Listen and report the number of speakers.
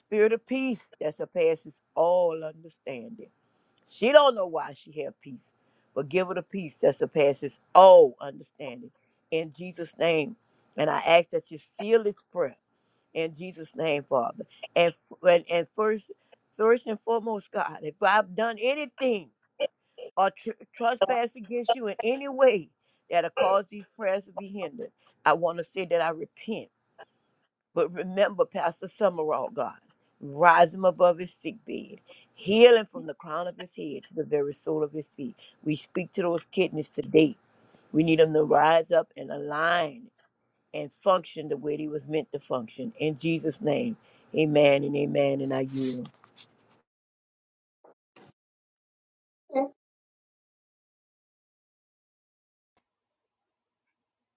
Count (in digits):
1